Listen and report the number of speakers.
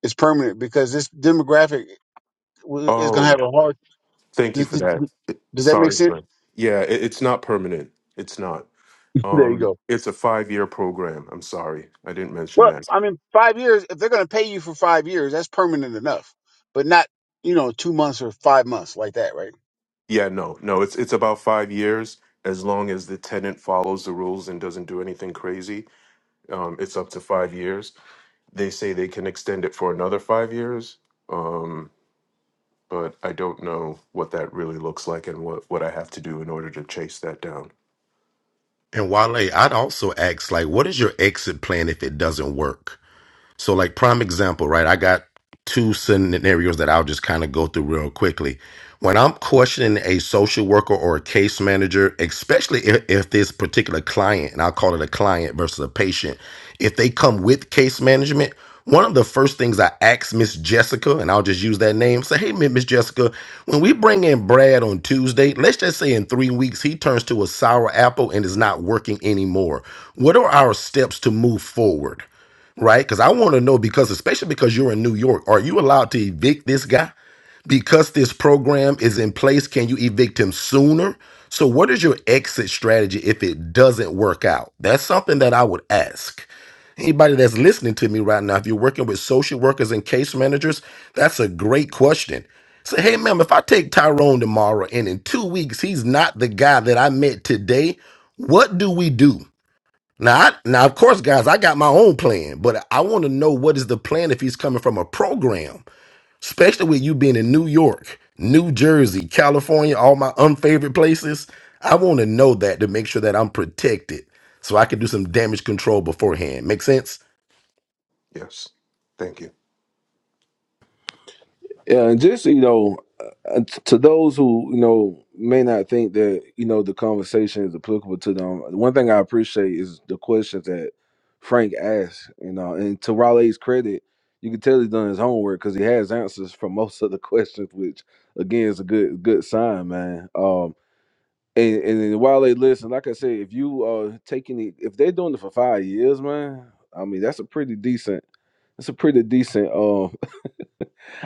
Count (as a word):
four